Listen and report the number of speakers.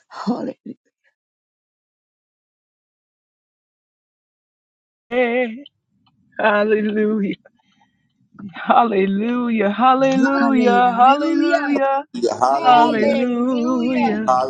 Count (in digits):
3